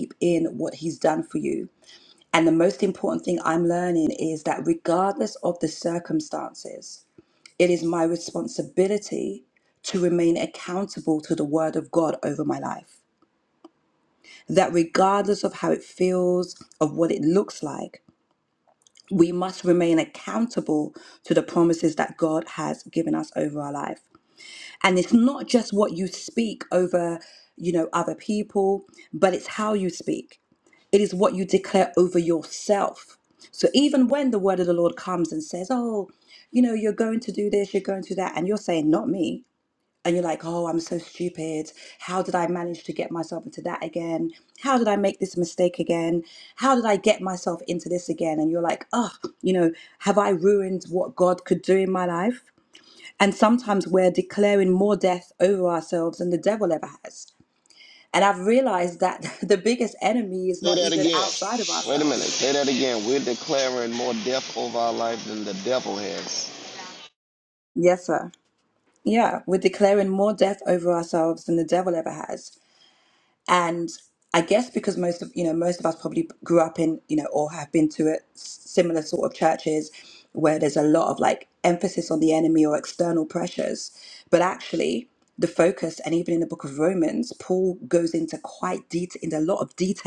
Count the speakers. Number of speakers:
2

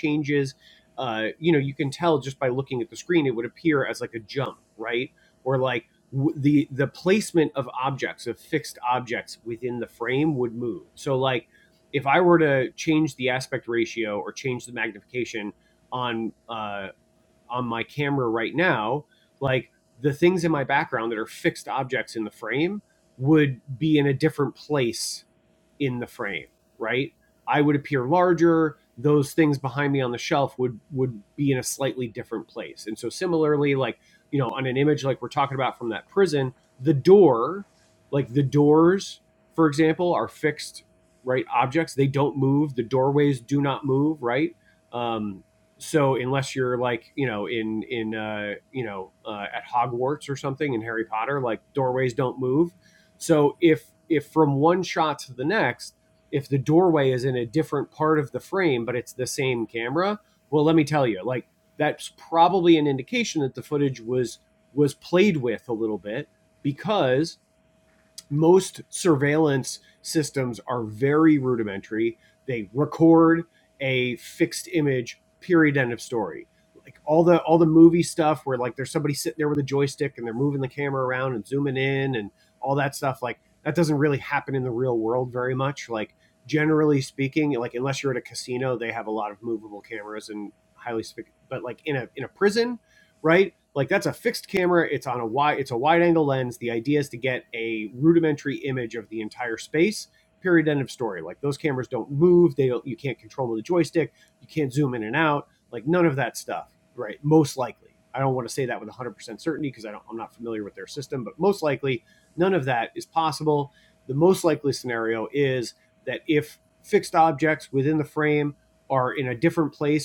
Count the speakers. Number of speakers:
1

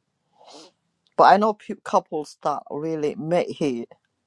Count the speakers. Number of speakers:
1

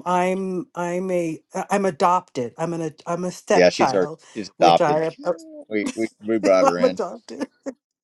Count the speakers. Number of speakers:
2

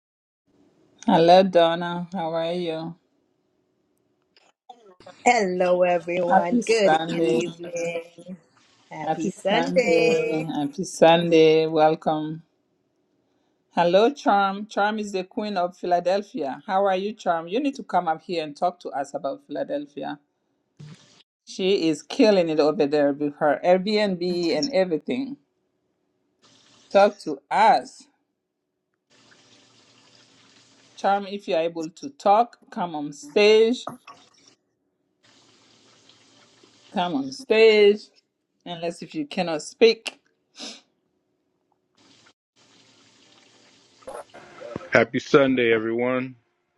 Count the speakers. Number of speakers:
3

